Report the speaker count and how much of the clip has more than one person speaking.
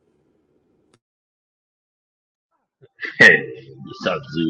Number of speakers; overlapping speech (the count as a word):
one, no overlap